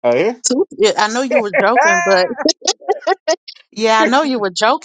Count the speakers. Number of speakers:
two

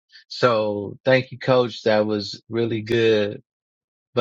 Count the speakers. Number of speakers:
one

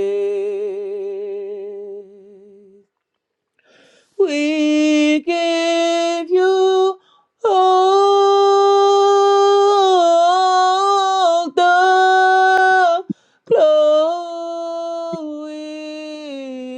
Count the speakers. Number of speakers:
one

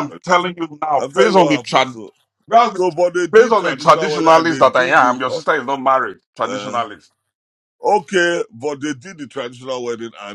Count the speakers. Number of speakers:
two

